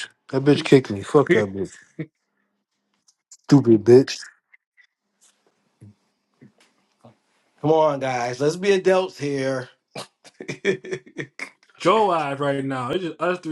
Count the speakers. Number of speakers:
three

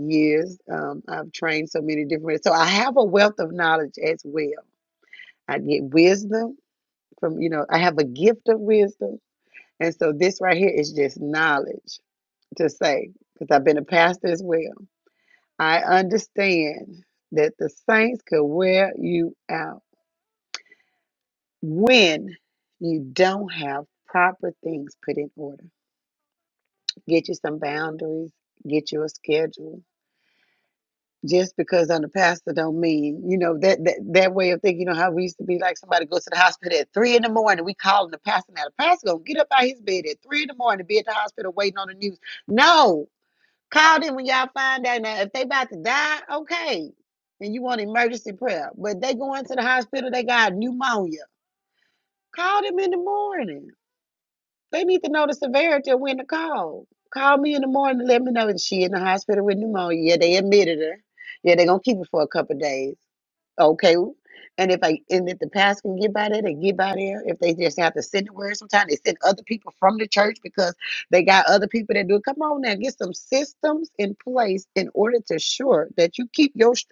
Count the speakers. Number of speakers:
one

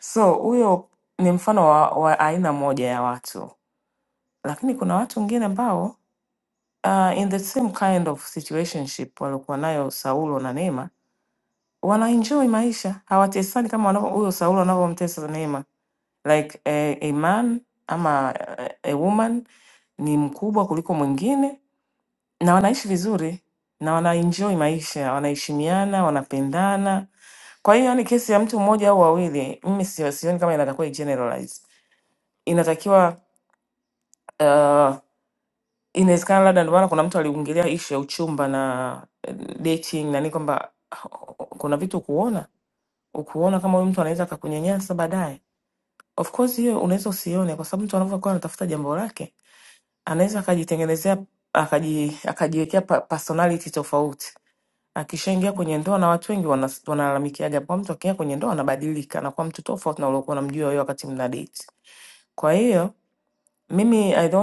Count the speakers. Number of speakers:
one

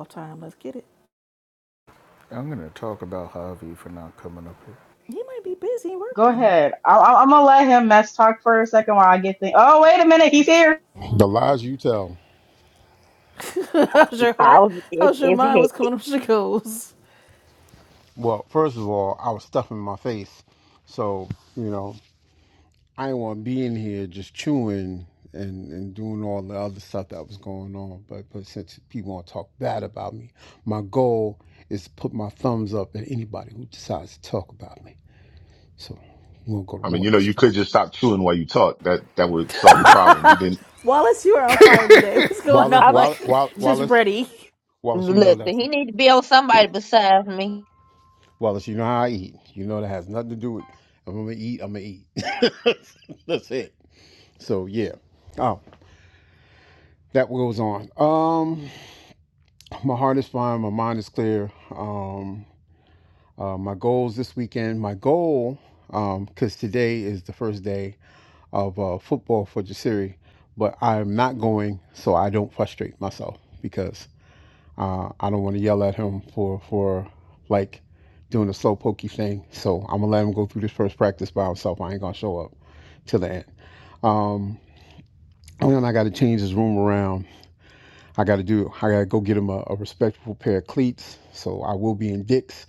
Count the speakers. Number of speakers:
six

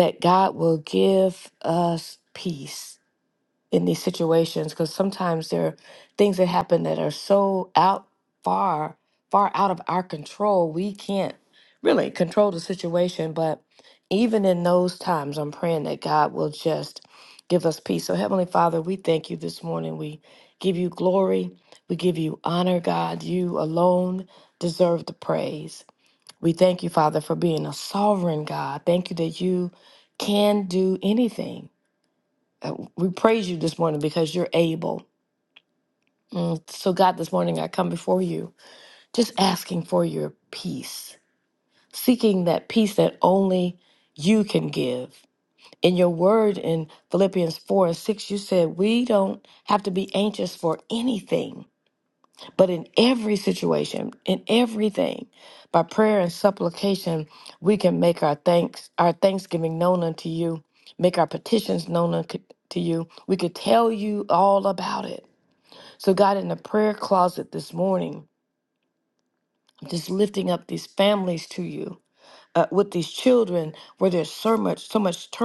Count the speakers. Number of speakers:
one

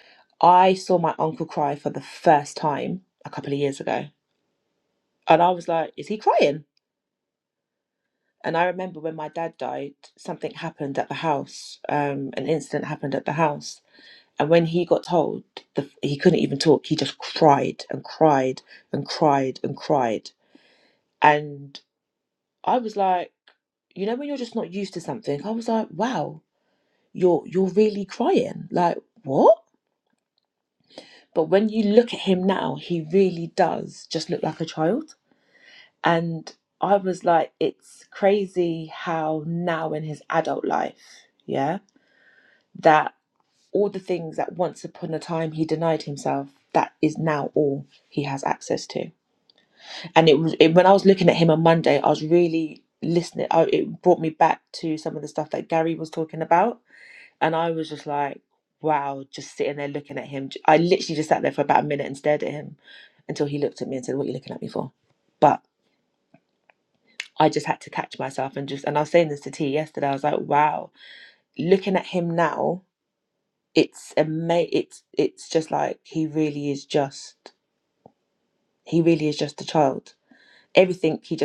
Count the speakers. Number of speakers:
one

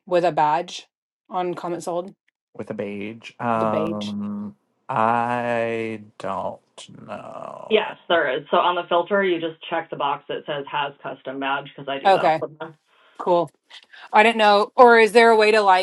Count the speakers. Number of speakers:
three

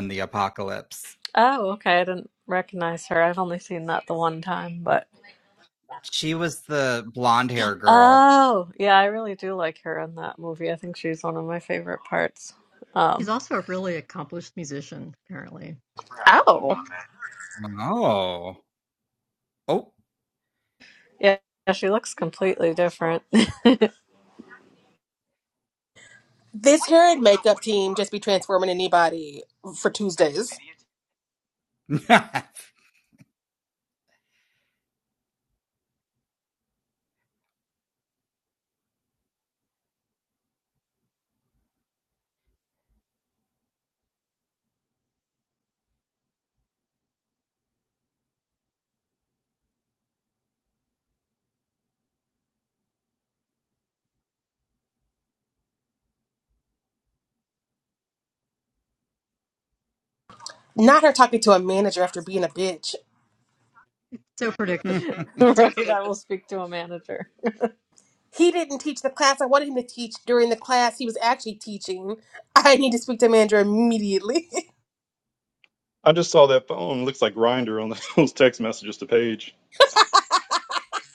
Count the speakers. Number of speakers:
five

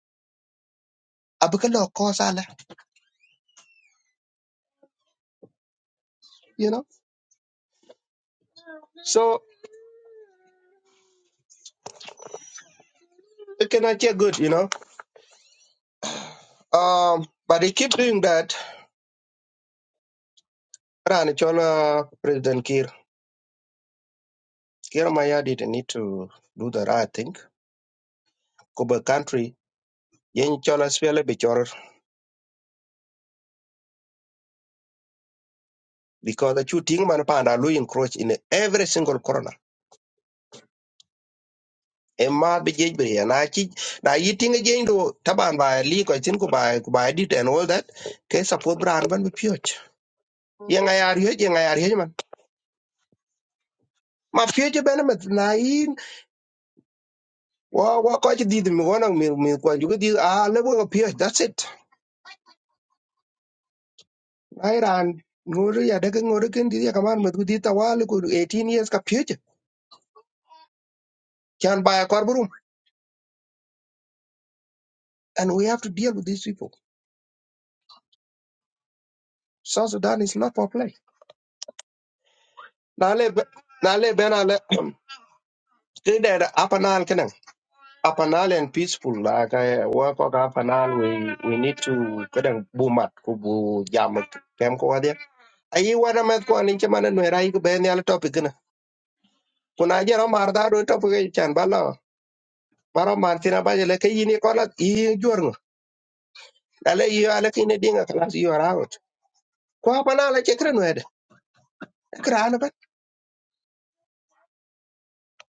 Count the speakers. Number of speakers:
one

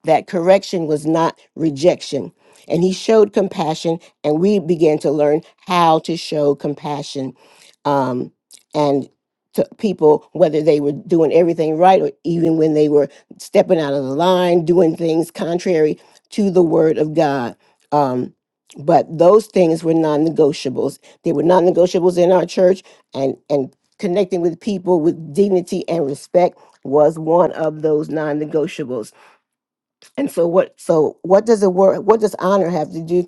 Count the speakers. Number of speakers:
one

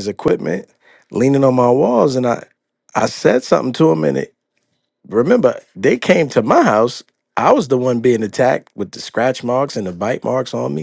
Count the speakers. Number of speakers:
one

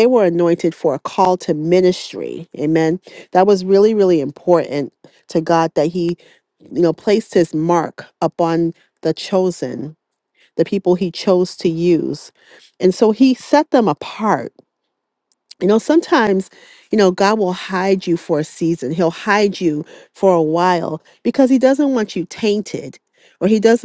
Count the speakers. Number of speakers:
one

